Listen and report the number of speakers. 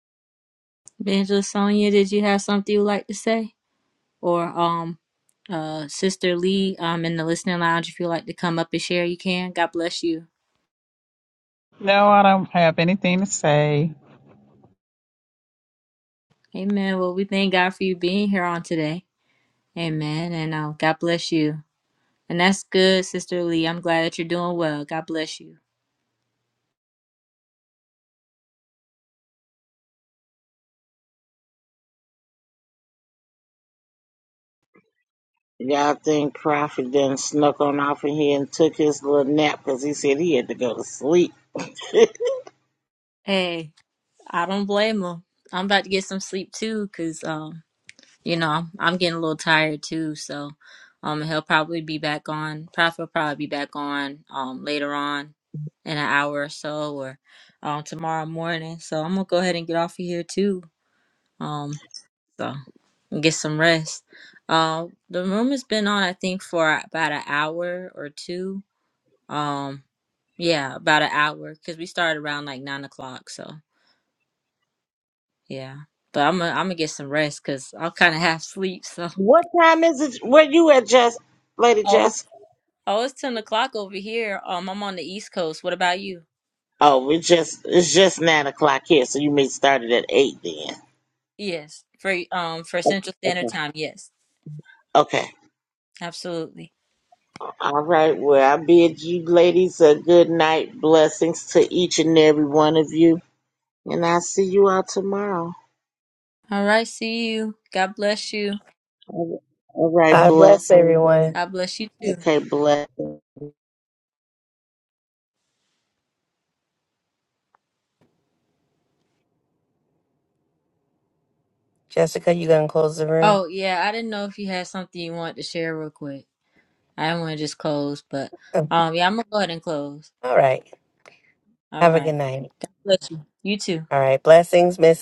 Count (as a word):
four